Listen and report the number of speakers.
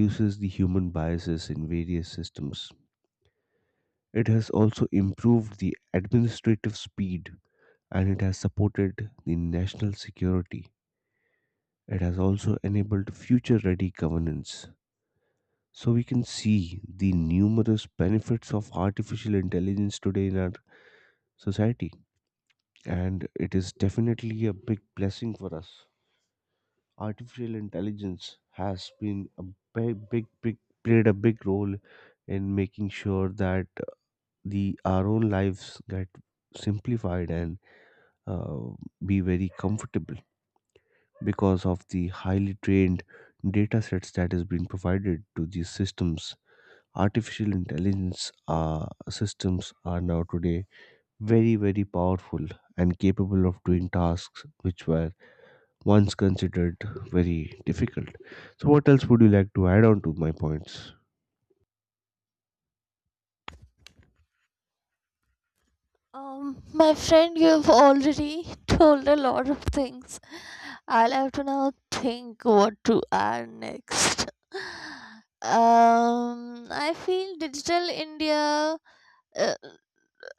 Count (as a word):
two